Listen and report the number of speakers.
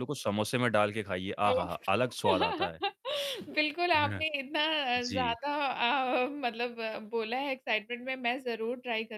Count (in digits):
2